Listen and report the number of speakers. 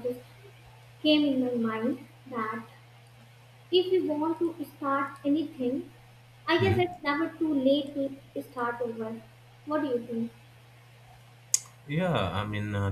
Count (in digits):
2